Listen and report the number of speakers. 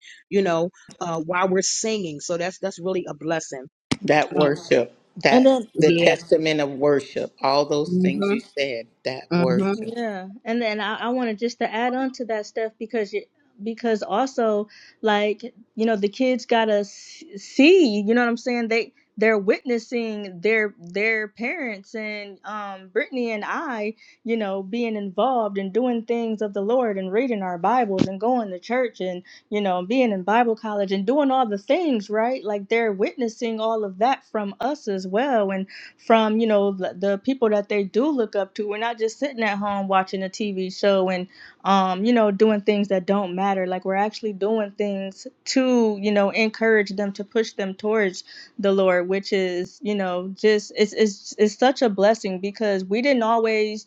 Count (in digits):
3